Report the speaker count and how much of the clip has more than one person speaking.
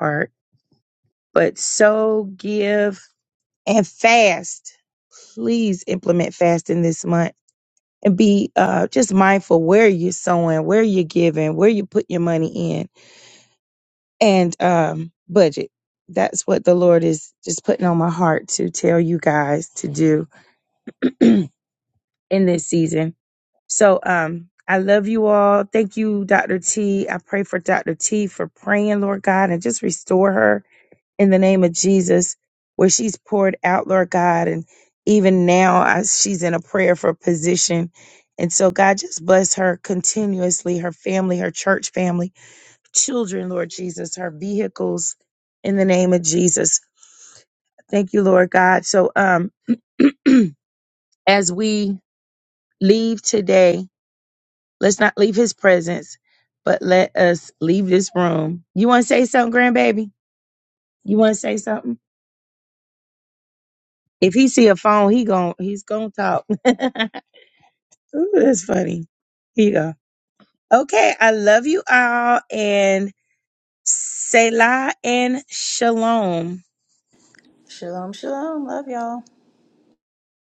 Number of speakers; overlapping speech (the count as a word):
two, no overlap